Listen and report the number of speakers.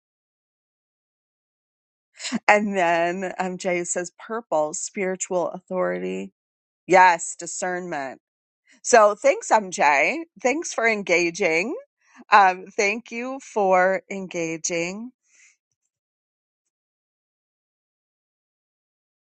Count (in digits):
1